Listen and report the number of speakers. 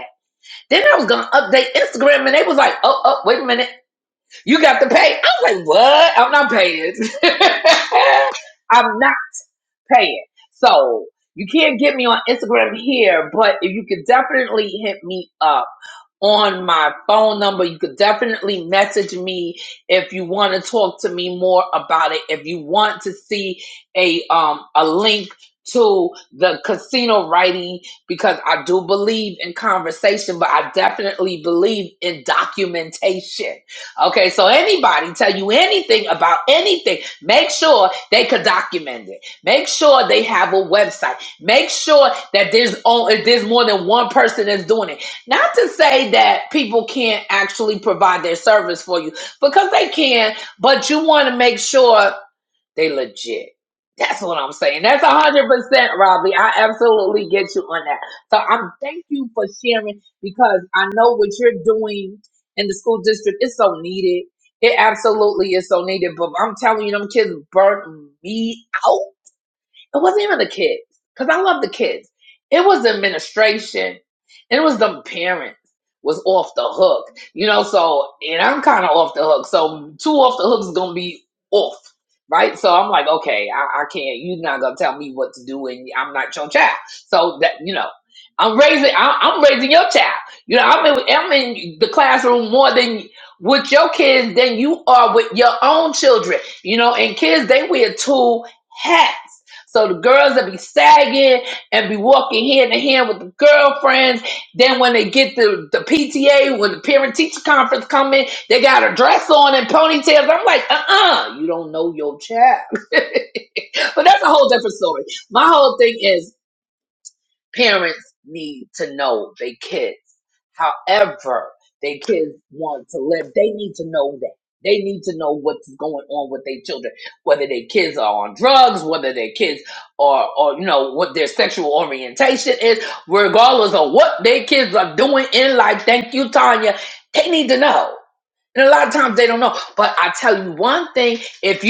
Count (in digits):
1